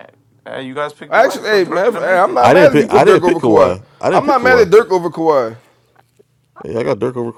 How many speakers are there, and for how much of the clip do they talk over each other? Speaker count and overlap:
three, about 43%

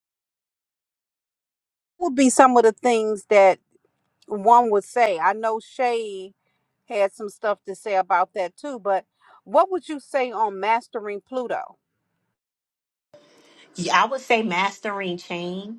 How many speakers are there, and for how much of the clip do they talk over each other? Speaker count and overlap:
two, no overlap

